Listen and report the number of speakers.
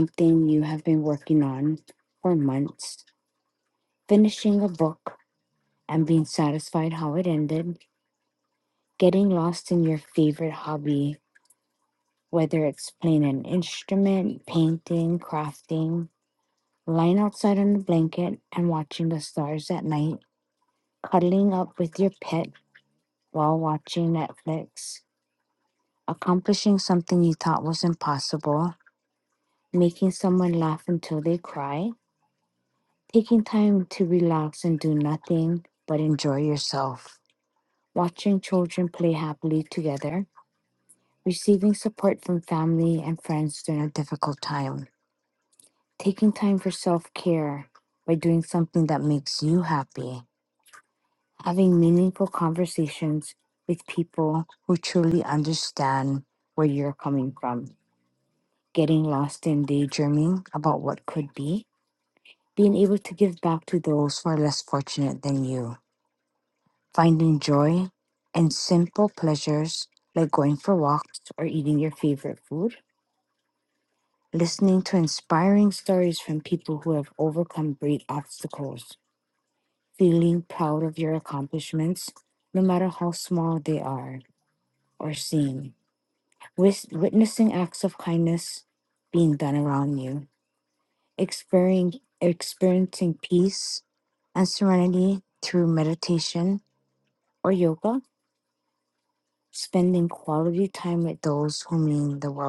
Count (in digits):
1